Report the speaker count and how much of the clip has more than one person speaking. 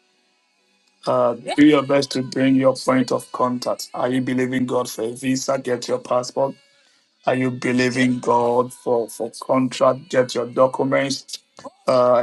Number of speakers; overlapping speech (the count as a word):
one, no overlap